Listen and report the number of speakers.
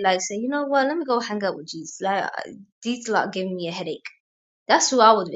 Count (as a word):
one